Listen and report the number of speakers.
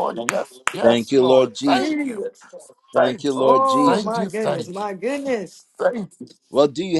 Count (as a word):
three